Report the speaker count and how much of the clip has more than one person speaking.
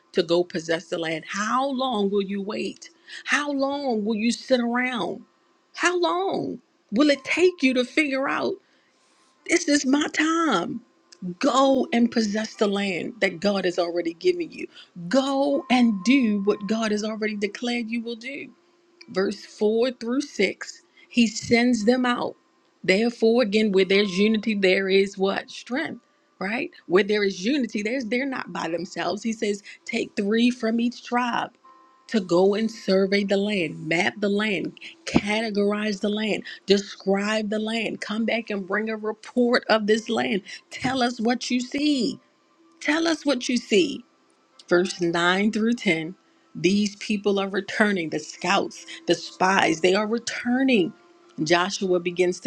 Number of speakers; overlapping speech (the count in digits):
1, no overlap